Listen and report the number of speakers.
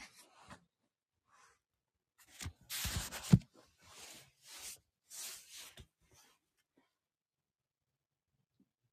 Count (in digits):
0